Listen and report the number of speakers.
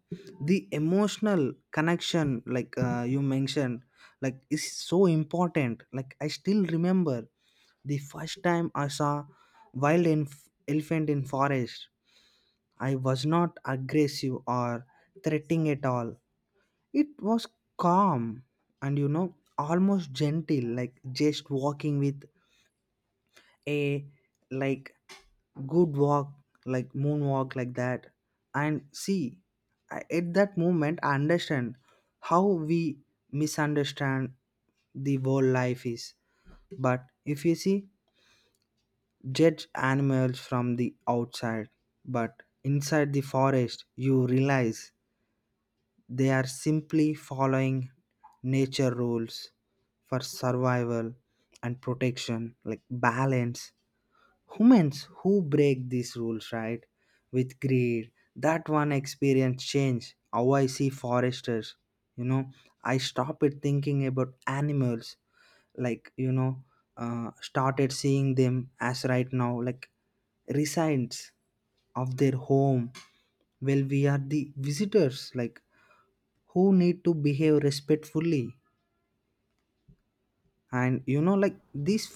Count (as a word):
one